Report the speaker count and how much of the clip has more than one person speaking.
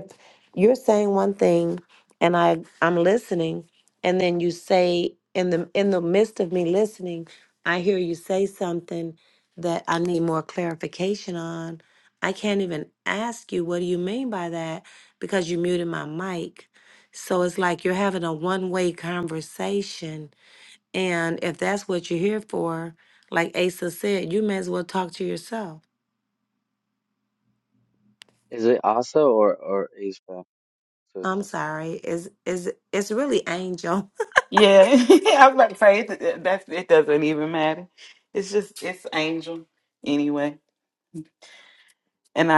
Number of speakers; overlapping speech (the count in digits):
3, about 1%